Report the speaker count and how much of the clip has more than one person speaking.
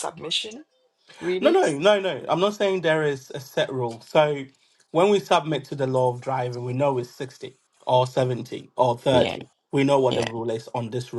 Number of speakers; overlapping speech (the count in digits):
2, about 6%